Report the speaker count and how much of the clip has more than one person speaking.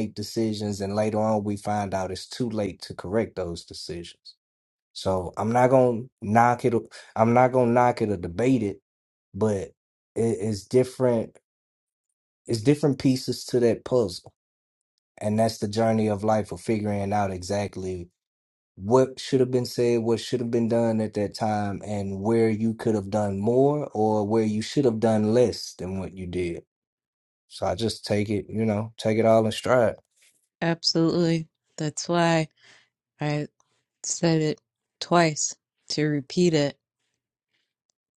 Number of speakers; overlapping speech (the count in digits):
2, no overlap